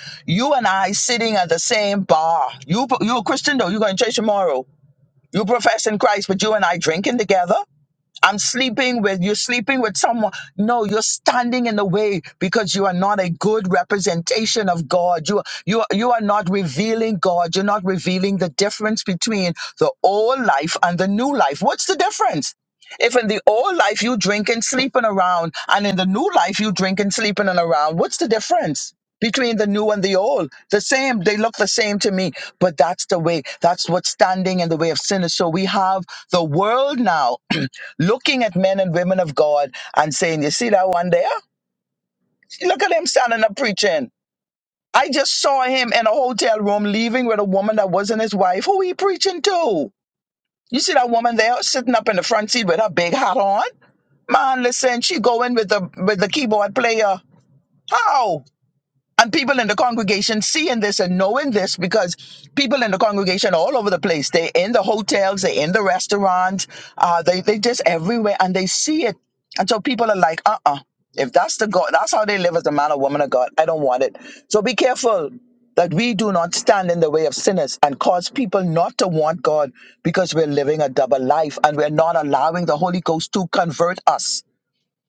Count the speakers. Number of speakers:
1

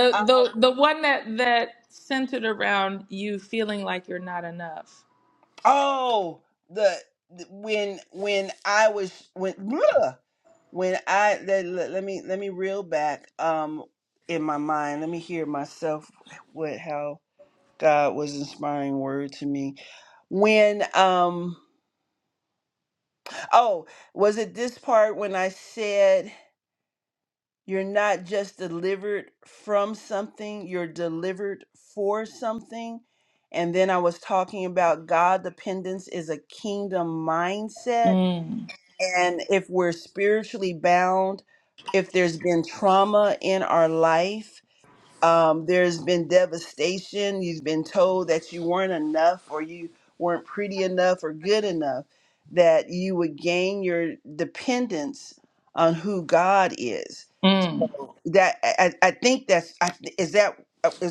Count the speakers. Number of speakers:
2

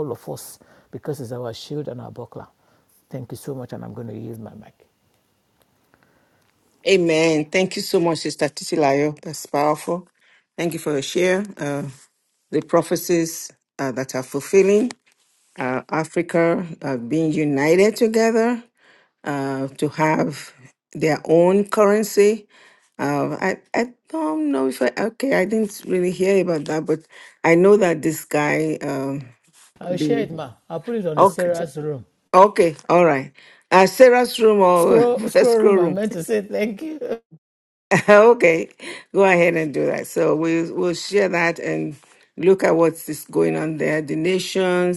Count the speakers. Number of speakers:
2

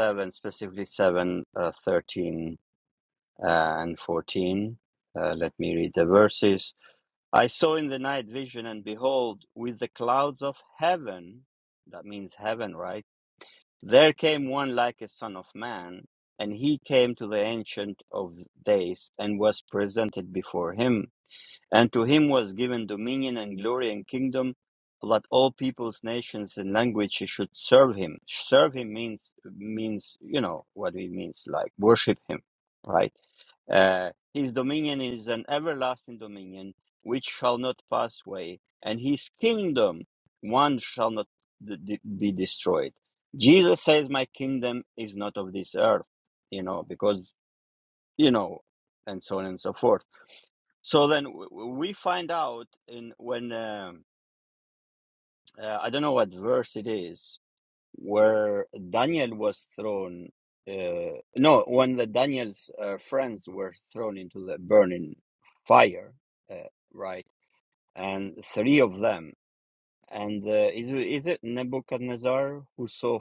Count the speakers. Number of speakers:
1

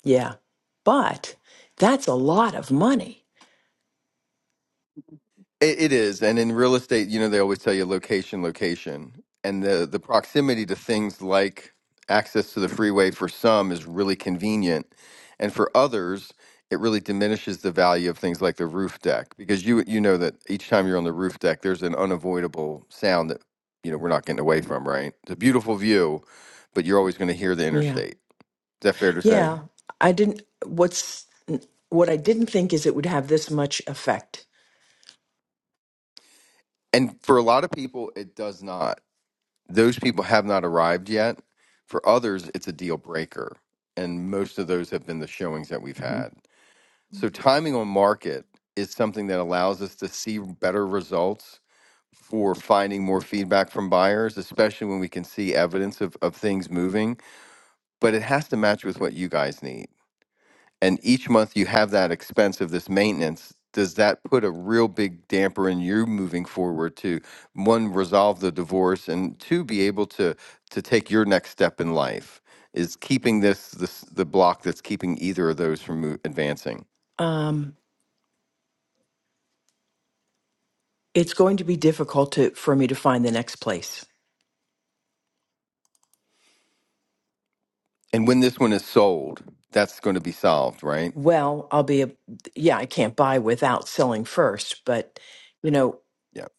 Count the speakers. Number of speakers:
2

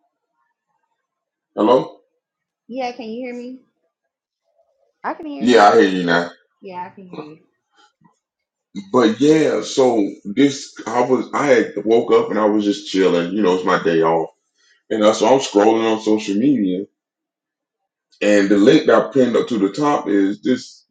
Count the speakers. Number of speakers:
2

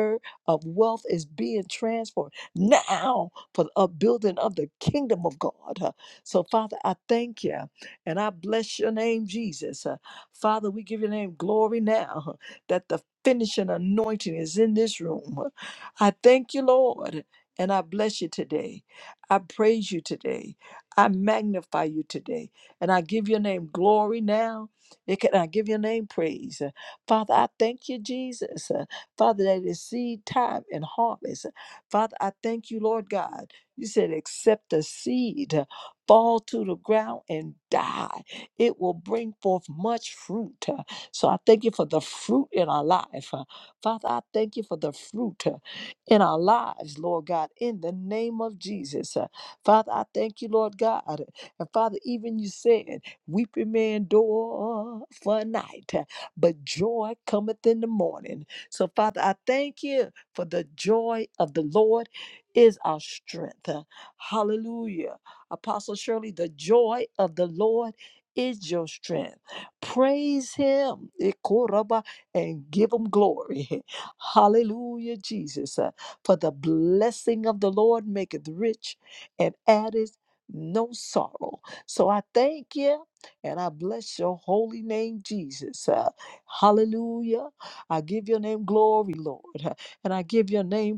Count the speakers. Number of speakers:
1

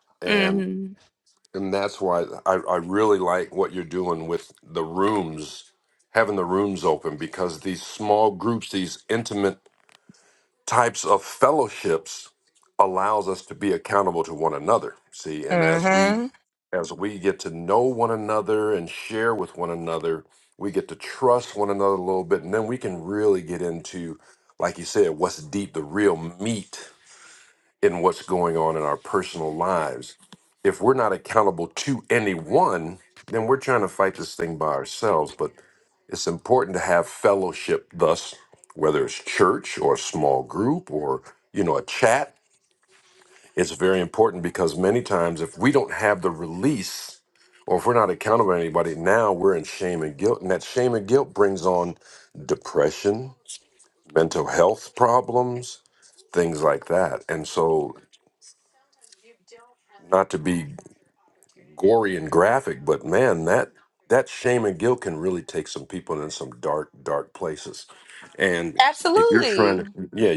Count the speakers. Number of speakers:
2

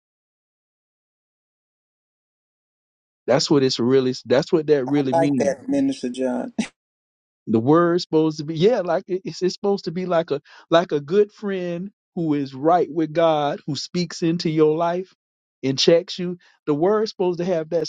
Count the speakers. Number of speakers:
2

